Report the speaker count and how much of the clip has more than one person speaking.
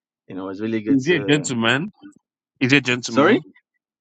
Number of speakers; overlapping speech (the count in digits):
2, about 21%